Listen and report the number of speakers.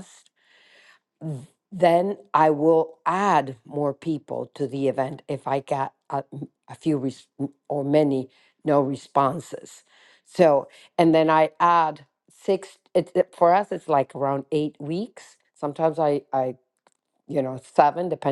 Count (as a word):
one